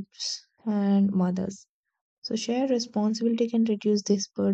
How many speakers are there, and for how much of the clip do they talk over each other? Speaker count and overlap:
1, no overlap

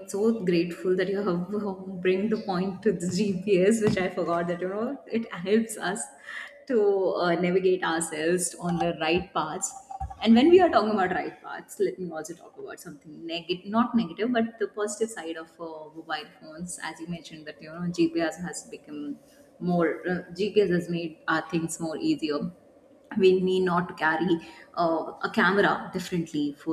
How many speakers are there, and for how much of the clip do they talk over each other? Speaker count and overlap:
1, no overlap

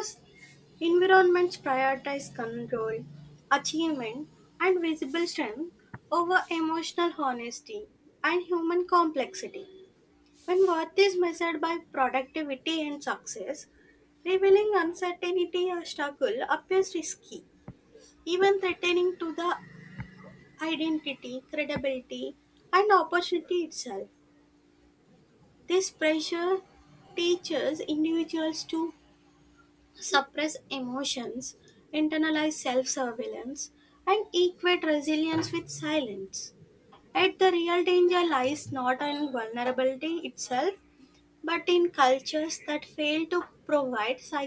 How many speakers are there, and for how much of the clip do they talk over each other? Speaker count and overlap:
1, no overlap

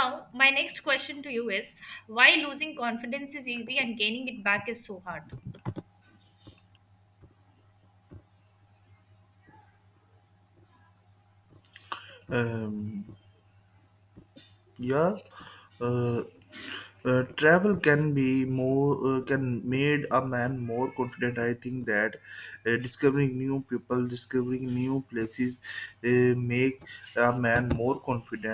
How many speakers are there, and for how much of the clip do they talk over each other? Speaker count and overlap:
2, no overlap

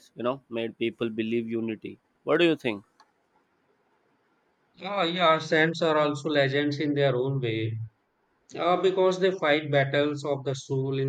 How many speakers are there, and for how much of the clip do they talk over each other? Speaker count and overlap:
2, no overlap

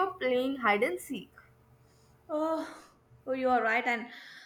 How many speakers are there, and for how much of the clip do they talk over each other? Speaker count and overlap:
2, no overlap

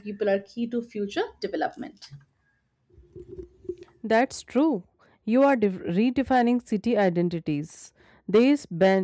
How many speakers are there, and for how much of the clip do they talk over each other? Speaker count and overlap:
2, no overlap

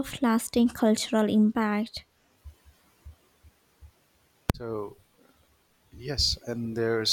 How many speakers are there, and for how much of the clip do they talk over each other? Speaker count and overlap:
2, no overlap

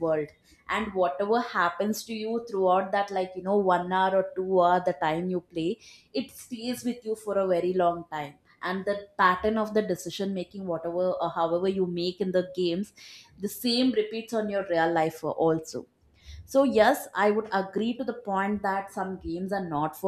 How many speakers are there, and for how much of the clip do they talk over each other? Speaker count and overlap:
1, no overlap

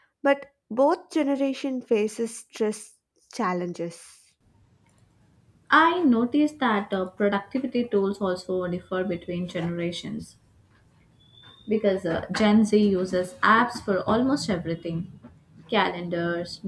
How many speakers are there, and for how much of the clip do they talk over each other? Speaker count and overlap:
2, no overlap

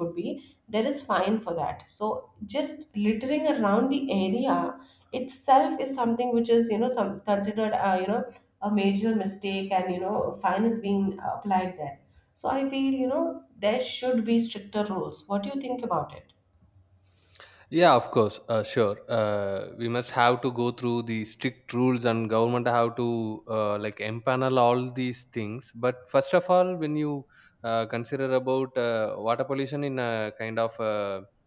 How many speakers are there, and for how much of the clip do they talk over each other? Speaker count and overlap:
2, no overlap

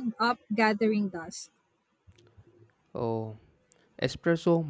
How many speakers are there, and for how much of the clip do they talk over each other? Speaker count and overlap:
2, no overlap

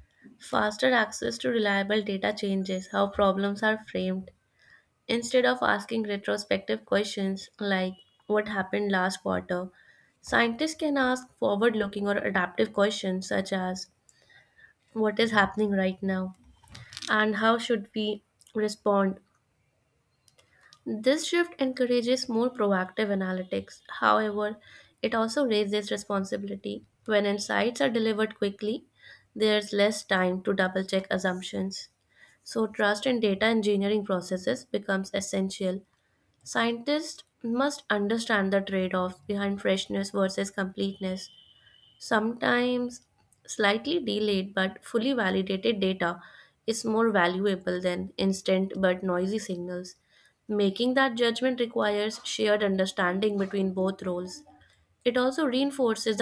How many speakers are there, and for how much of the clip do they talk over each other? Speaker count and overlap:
1, no overlap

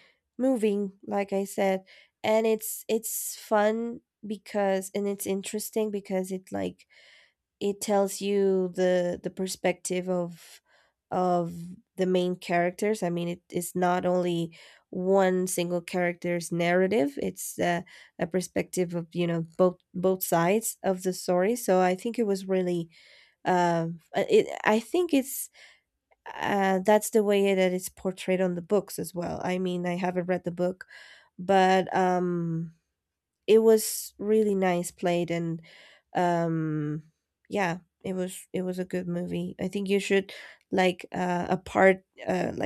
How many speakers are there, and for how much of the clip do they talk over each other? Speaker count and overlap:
1, no overlap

